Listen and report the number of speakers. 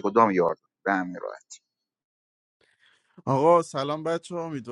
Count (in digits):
2